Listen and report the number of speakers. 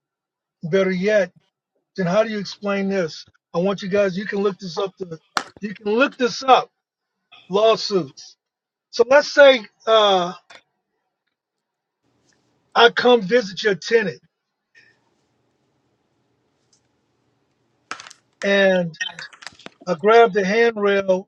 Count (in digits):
1